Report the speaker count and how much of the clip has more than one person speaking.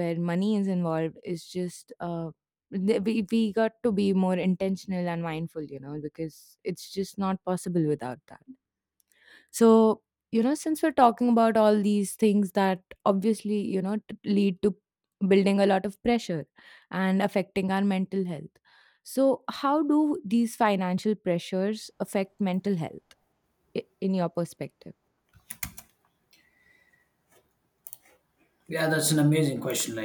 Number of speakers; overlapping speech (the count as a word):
two, no overlap